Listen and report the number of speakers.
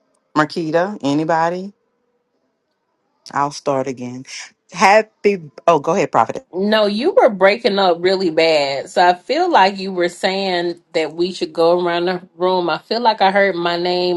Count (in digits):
2